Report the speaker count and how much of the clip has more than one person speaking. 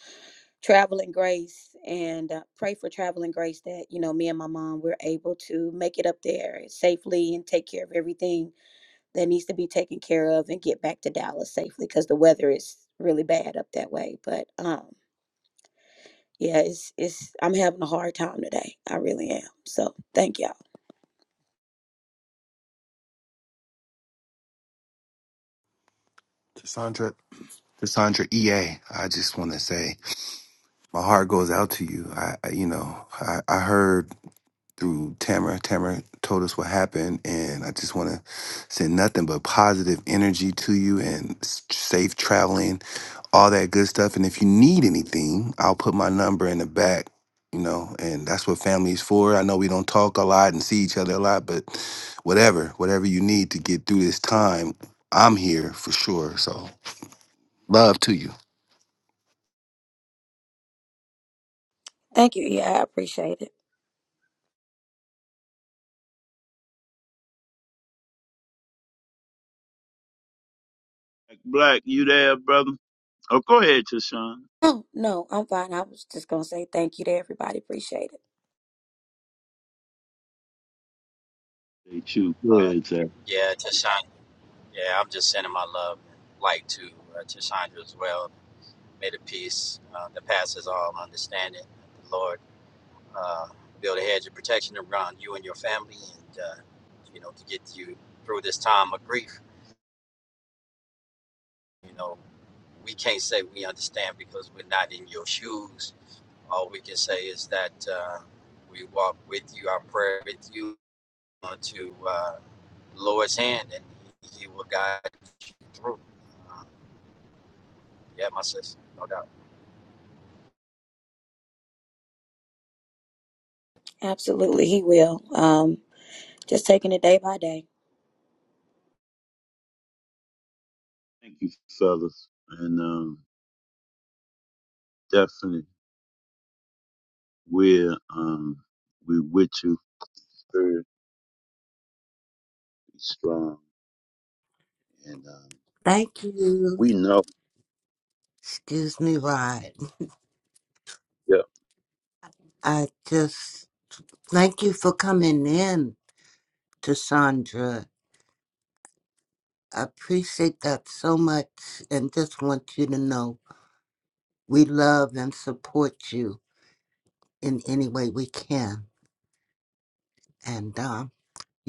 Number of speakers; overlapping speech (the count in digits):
5, under 1%